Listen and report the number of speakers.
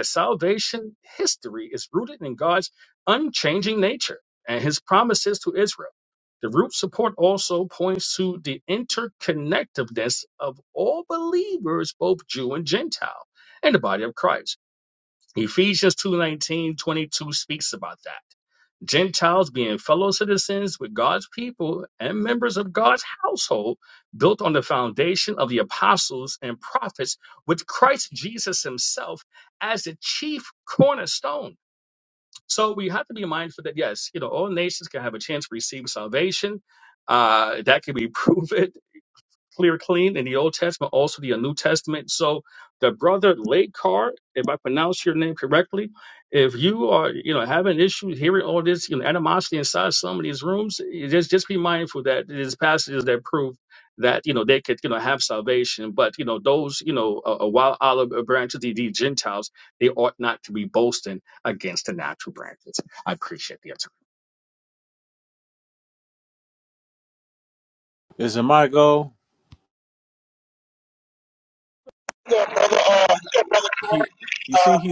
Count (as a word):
three